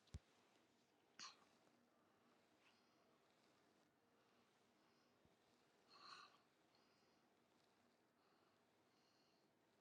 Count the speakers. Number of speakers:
zero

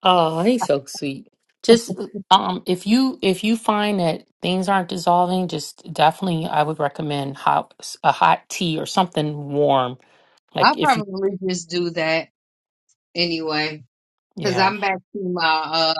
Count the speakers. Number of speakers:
two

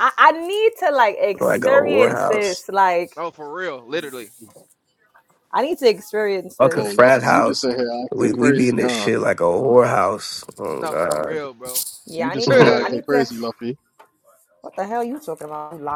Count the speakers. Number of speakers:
four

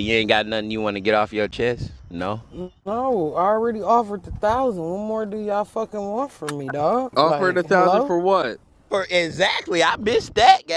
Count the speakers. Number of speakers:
three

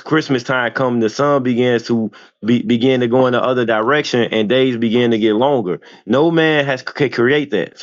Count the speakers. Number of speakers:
one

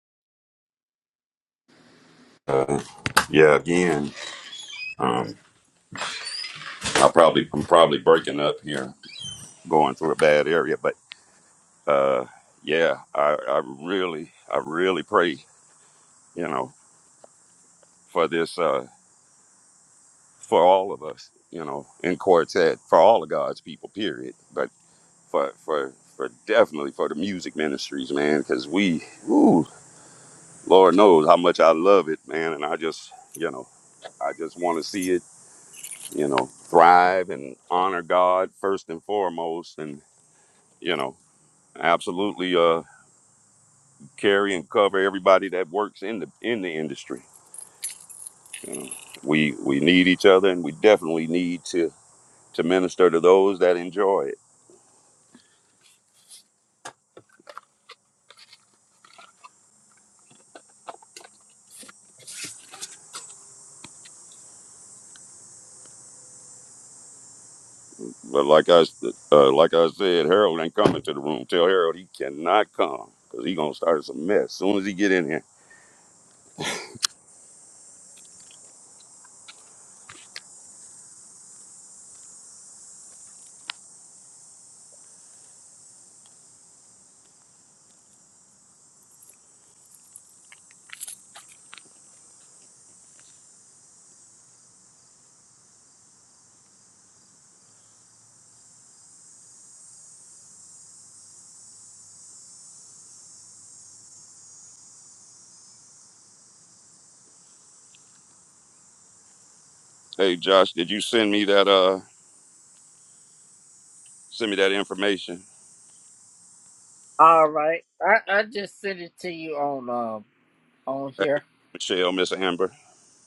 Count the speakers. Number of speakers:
two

